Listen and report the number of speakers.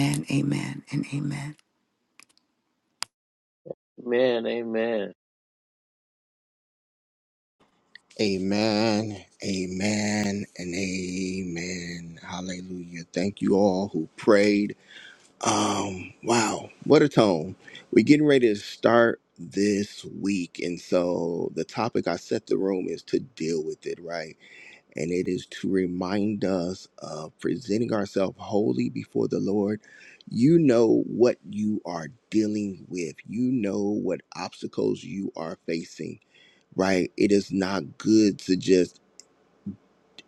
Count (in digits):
3